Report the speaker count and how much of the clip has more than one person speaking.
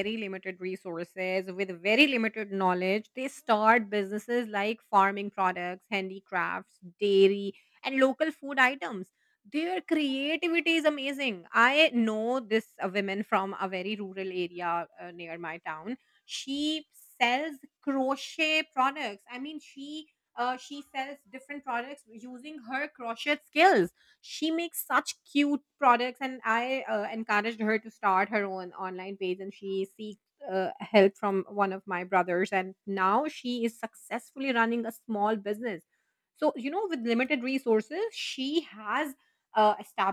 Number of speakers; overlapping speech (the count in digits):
1, no overlap